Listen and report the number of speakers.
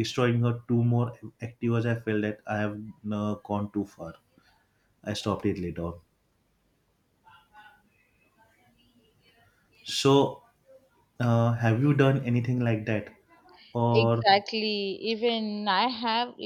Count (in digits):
2